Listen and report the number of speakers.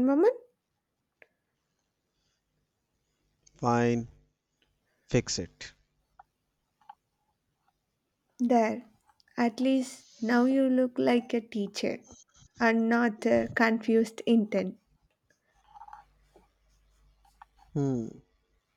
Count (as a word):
two